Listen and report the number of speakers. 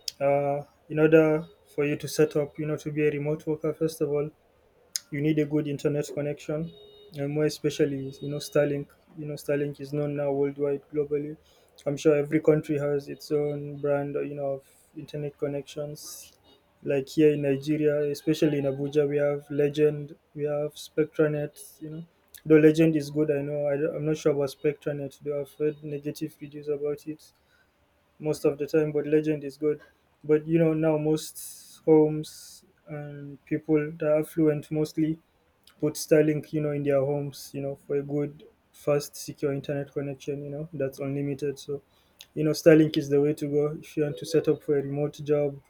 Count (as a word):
one